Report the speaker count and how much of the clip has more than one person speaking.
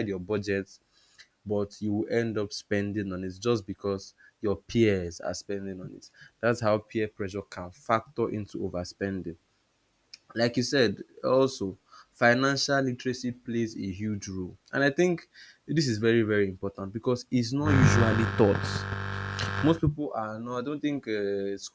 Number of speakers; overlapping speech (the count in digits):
1, no overlap